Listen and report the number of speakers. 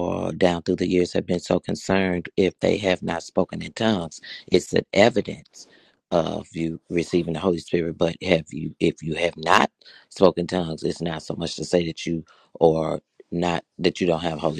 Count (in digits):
1